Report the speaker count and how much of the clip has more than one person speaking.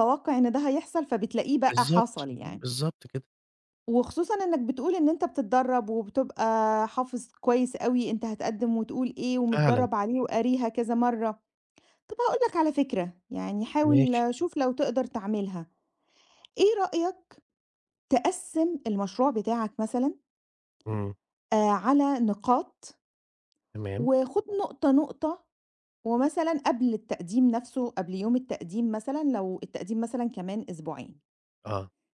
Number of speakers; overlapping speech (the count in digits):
2, about 4%